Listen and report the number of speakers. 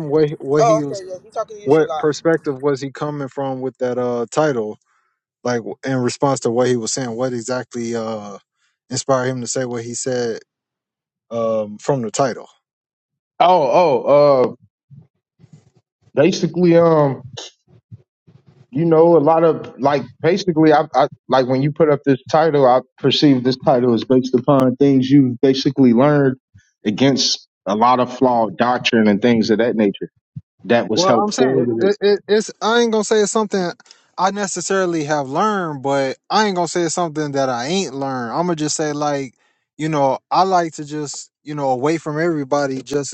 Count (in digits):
3